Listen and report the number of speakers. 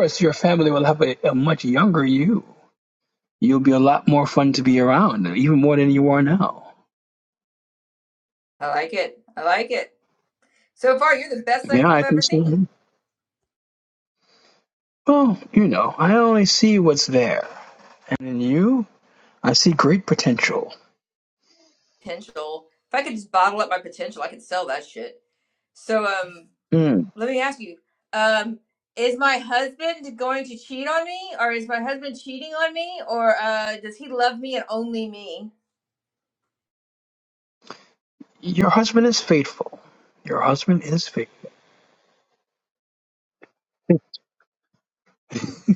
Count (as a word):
two